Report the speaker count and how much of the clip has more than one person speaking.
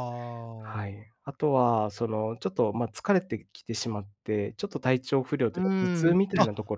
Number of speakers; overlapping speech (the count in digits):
2, about 17%